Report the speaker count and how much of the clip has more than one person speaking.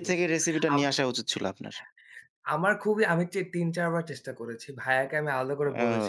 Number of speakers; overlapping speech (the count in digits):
2, about 7%